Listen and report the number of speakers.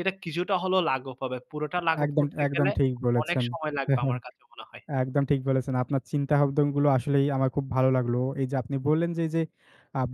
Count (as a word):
two